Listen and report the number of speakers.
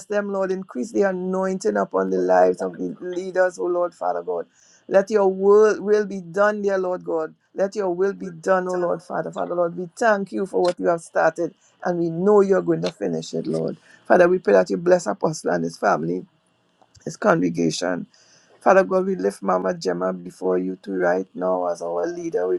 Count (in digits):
1